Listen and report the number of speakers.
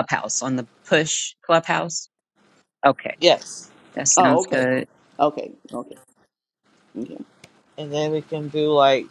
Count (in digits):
3